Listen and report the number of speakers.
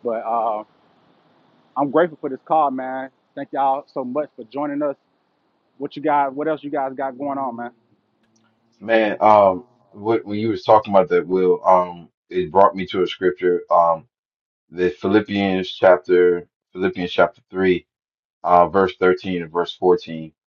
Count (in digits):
2